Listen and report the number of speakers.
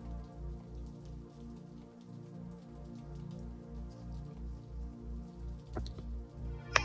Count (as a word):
zero